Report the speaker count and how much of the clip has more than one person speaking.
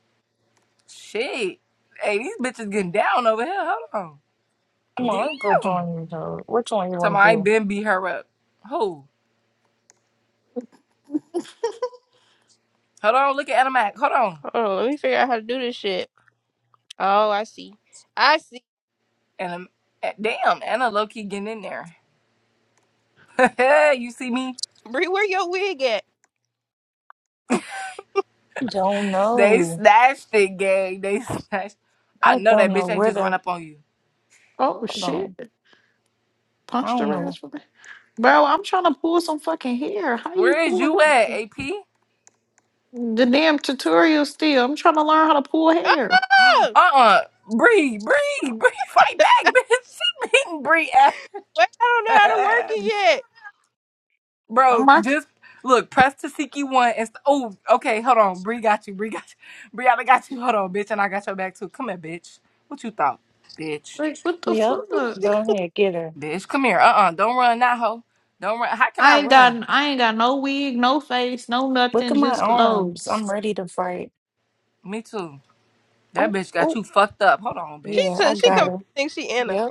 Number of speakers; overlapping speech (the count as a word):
four, about 11%